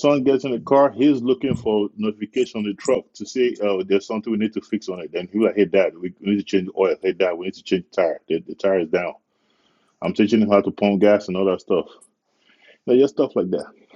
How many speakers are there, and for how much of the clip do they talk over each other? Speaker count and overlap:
one, no overlap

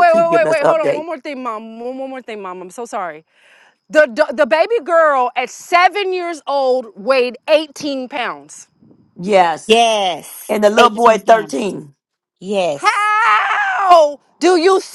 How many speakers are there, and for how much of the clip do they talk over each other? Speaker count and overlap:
three, about 12%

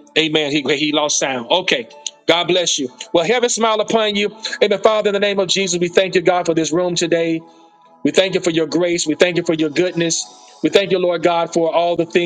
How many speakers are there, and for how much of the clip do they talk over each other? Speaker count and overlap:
one, no overlap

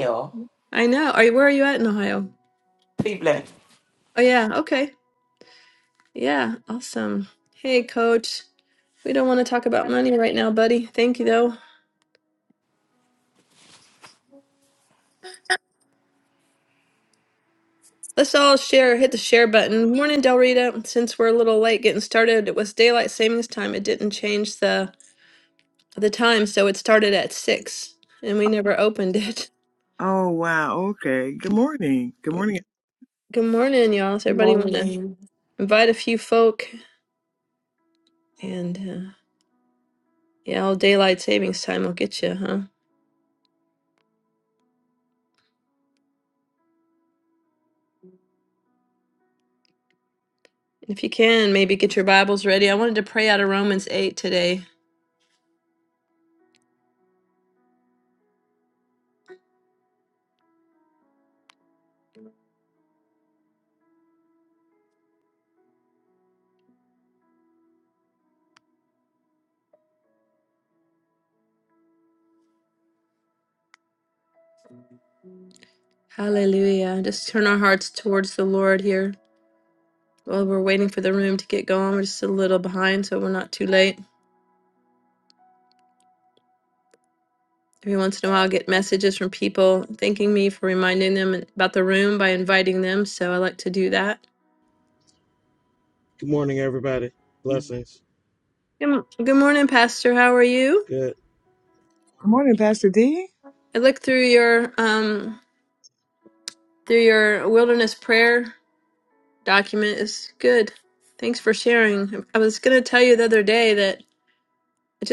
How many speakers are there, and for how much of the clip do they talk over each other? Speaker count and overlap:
four, about 1%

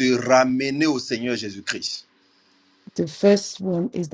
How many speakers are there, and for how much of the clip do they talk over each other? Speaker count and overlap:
two, no overlap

